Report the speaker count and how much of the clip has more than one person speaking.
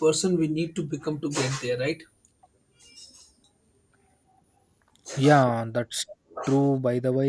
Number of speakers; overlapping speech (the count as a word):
two, no overlap